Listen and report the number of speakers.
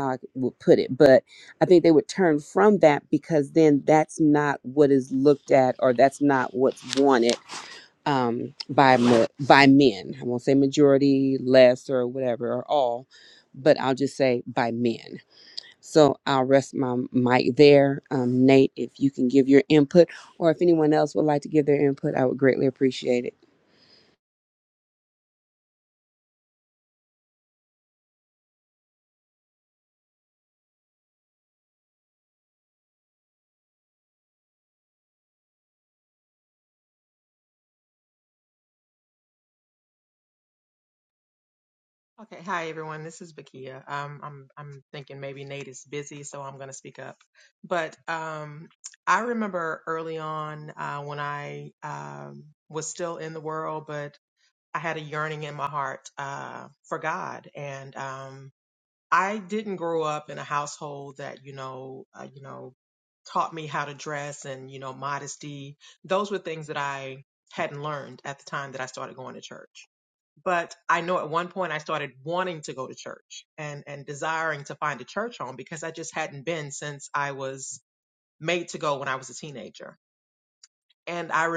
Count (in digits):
2